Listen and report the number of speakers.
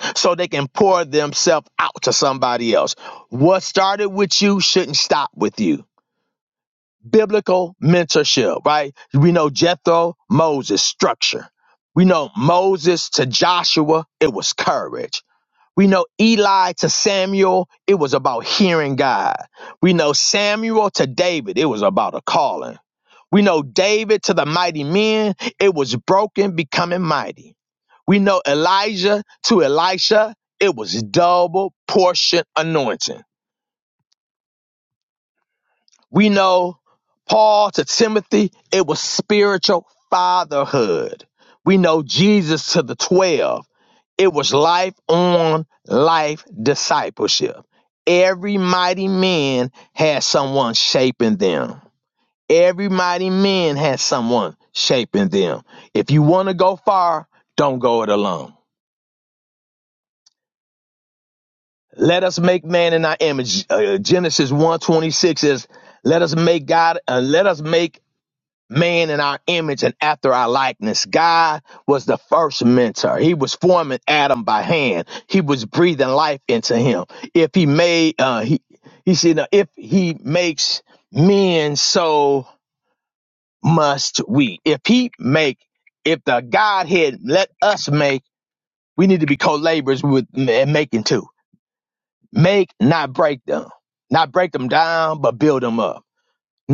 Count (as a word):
one